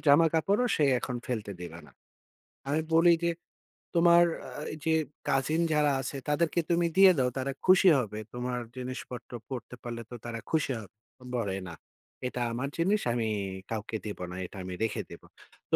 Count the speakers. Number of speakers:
1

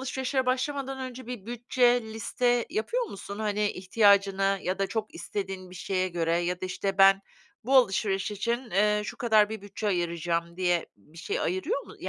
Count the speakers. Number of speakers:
1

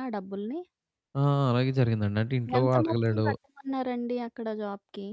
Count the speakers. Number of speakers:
2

